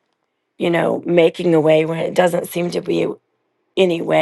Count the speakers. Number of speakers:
one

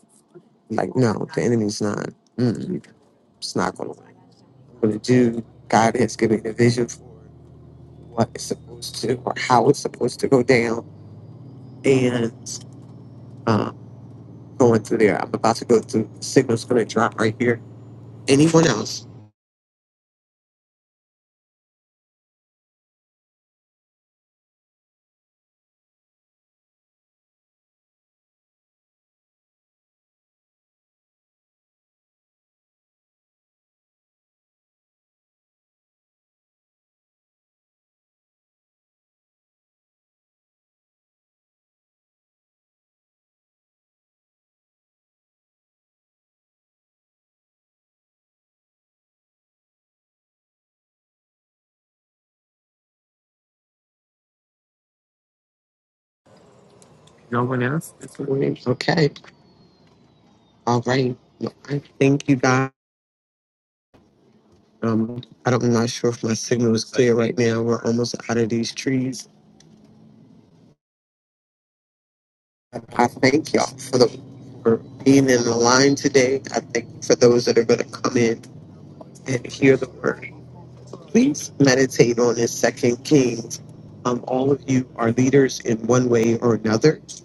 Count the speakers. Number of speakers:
one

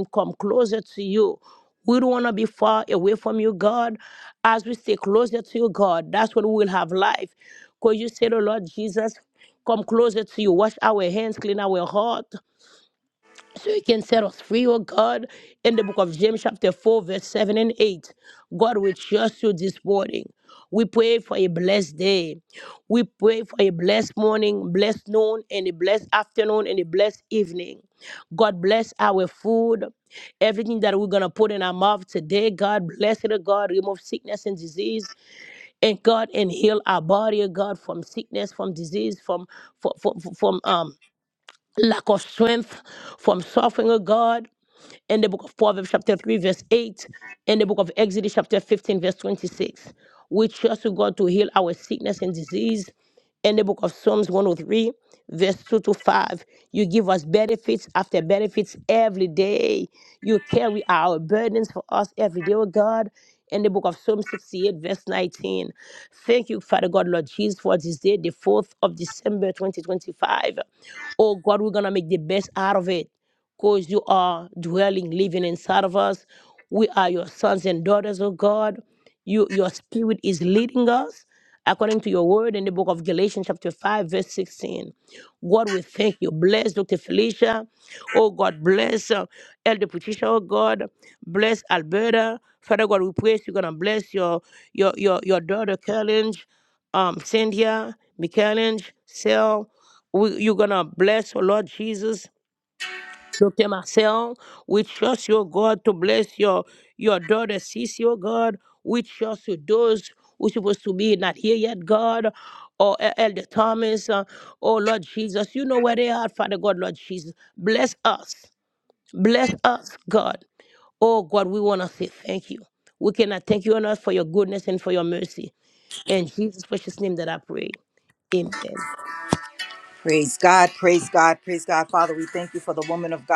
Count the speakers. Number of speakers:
two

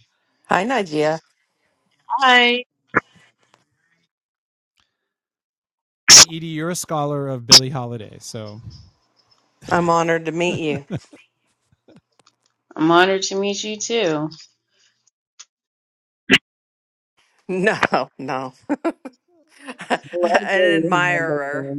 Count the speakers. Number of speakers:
three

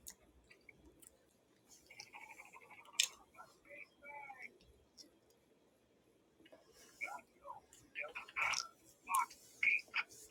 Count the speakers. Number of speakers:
zero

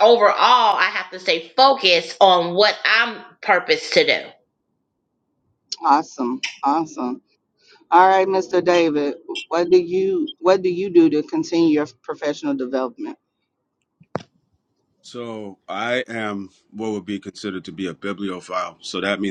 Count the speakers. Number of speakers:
three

